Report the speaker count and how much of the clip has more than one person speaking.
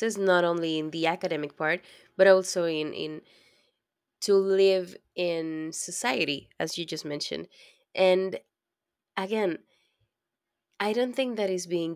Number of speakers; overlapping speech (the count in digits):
1, no overlap